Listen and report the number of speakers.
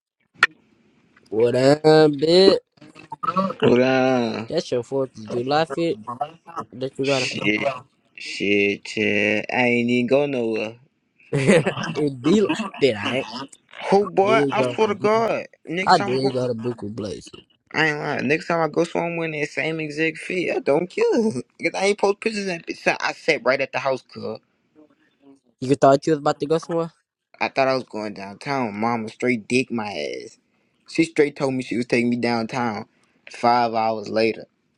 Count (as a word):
two